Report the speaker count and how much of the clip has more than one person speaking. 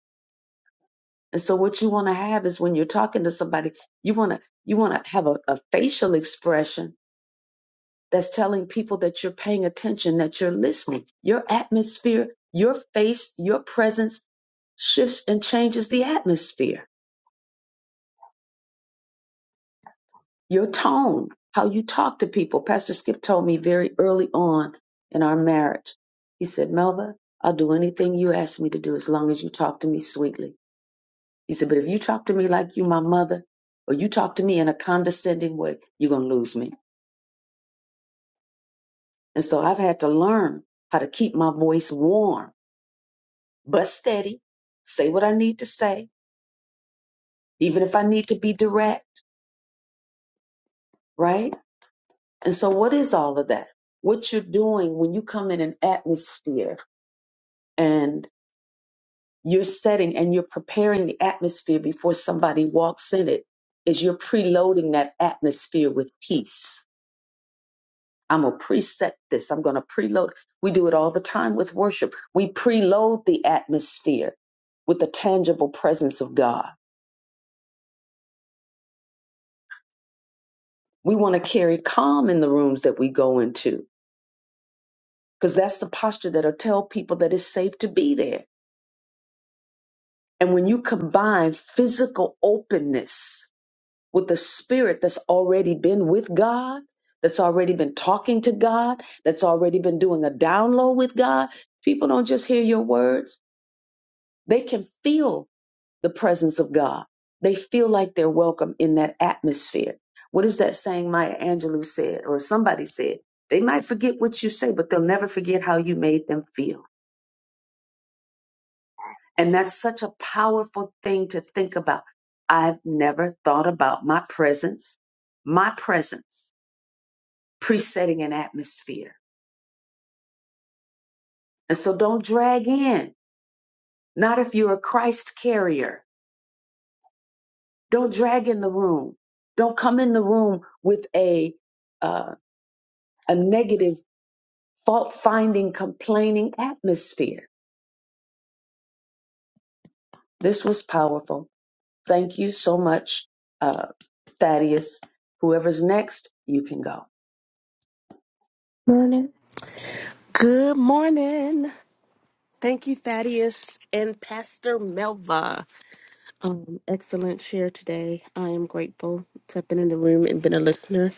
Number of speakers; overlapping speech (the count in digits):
2, no overlap